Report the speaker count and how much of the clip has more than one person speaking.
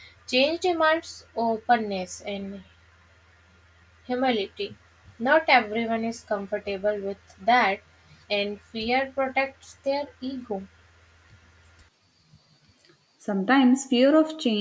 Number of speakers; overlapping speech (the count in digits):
2, no overlap